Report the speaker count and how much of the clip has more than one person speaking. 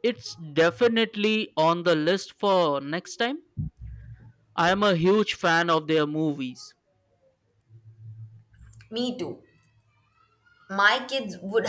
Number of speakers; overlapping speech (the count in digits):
2, no overlap